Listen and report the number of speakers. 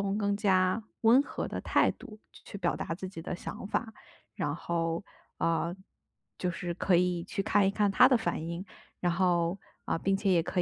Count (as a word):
one